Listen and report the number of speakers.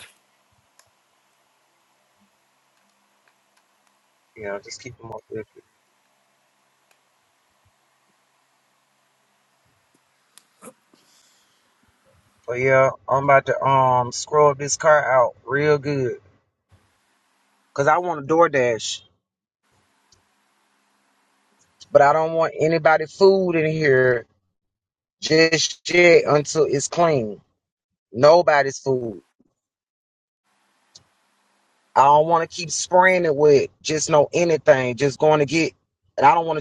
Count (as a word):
one